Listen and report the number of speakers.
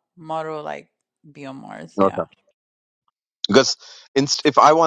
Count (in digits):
2